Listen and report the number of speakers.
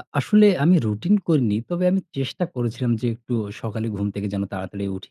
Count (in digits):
1